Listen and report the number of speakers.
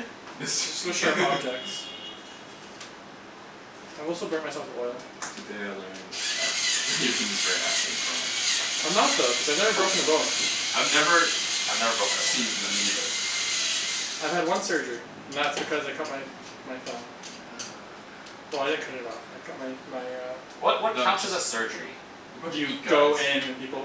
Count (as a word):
three